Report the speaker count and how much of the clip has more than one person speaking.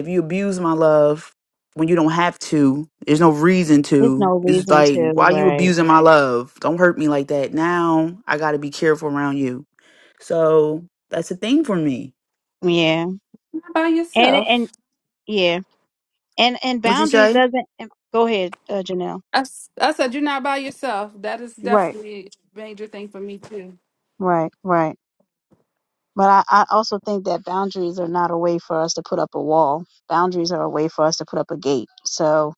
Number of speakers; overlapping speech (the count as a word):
three, about 9%